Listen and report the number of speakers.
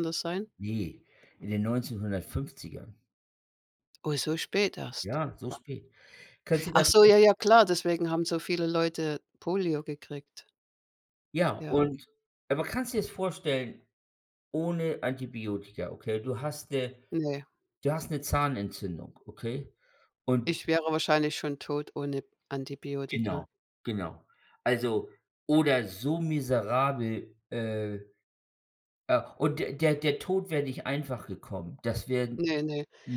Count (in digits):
2